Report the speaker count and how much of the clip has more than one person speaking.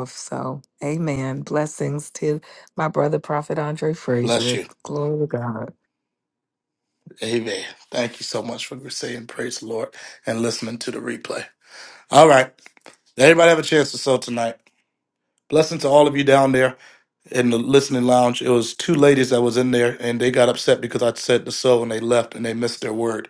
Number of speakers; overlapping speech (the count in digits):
2, about 2%